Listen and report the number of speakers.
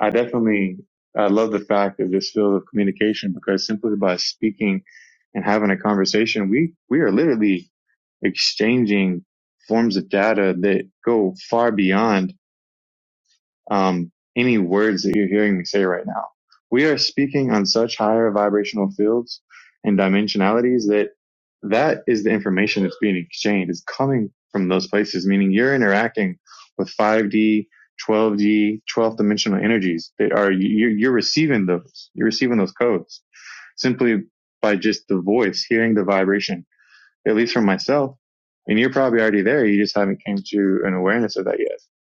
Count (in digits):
1